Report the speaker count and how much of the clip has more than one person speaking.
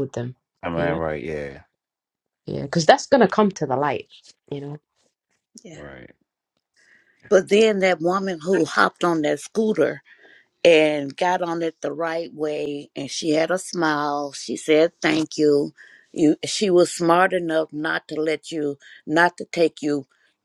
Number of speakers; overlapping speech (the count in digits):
3, about 1%